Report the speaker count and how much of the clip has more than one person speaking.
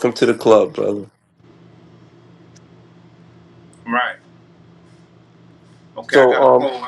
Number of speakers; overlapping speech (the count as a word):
two, about 8%